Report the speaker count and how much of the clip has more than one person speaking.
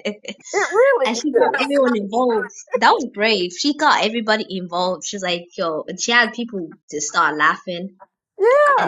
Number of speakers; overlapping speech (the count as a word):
two, about 3%